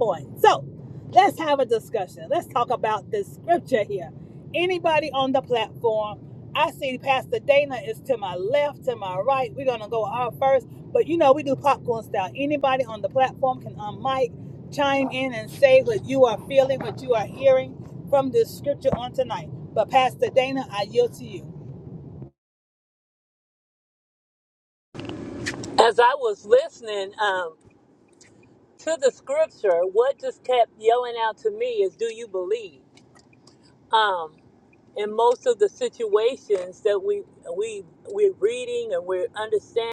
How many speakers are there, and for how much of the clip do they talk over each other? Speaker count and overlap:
2, no overlap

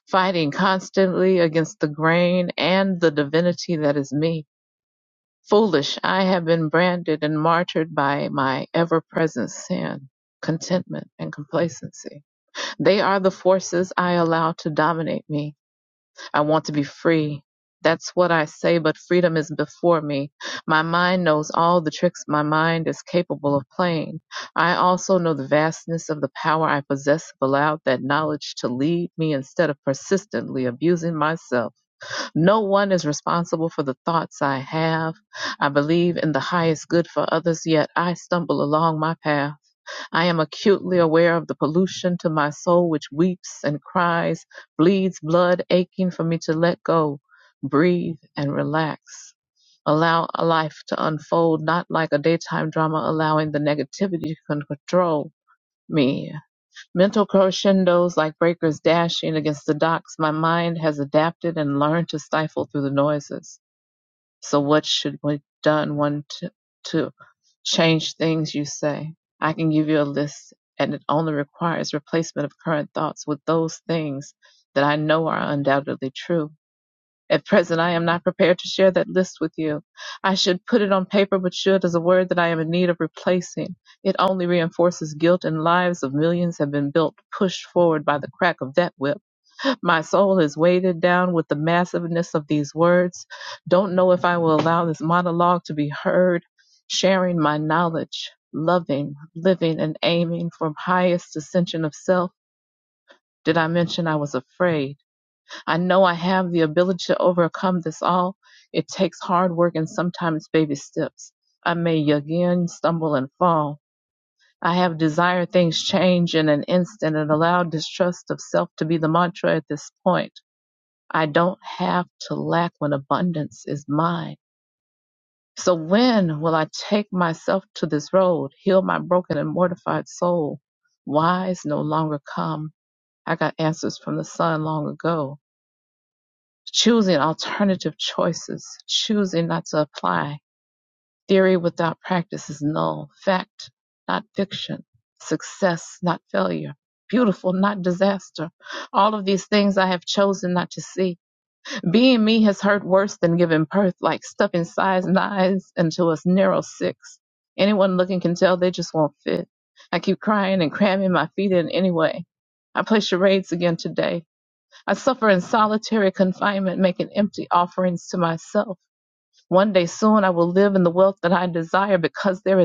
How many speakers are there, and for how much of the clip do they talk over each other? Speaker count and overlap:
1, no overlap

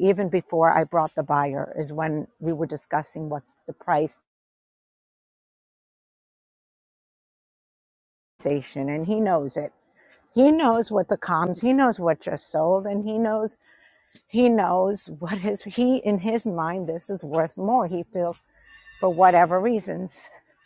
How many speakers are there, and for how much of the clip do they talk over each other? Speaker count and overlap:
1, no overlap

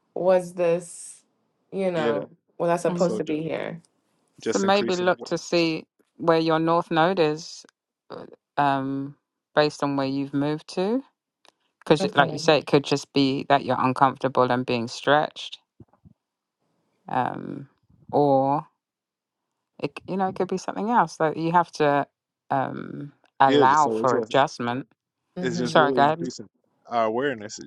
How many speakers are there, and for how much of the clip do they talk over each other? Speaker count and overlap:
3, about 14%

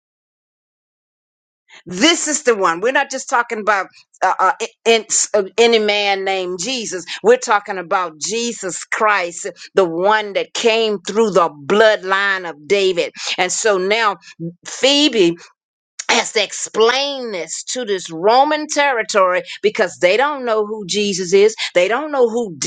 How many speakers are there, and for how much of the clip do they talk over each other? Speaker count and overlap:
1, no overlap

